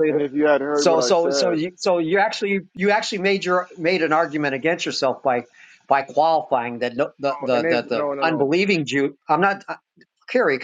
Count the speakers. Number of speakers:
2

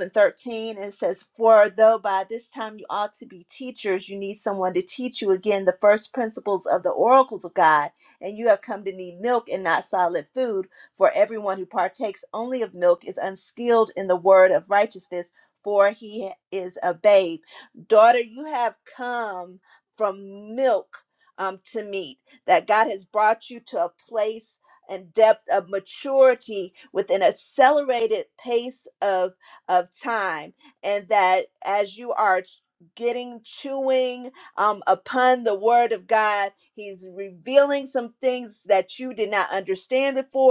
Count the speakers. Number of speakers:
1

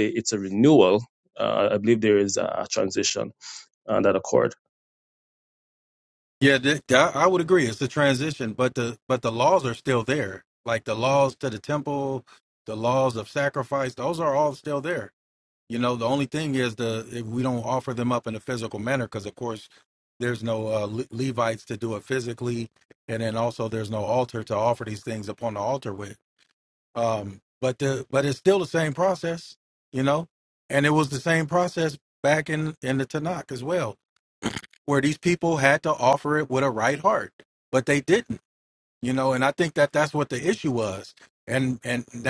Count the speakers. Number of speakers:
2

